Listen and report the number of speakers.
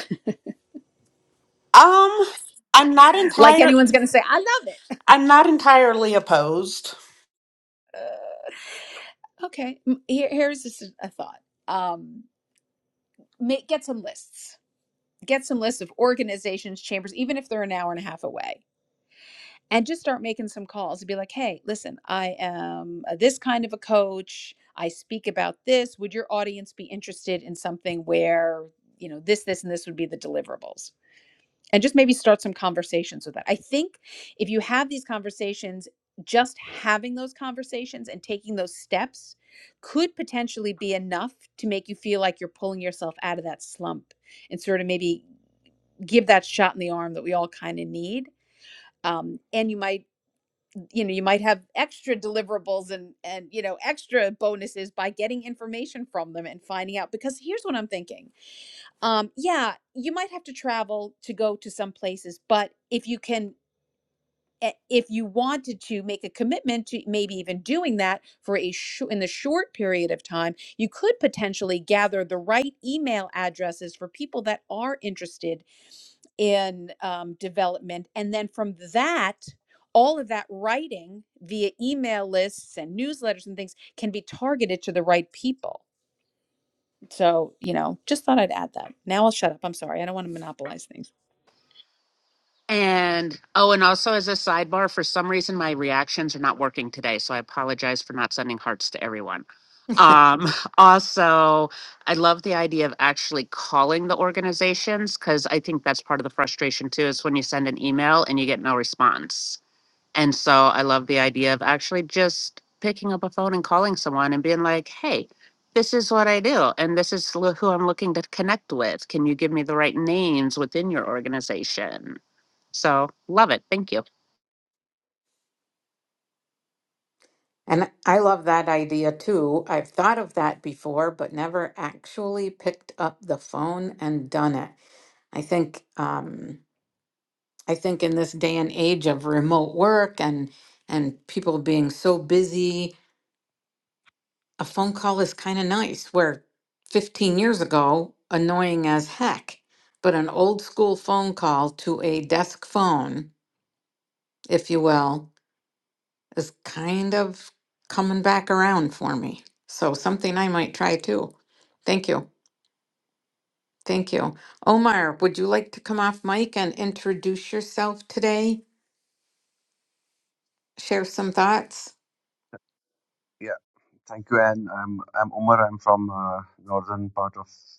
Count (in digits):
4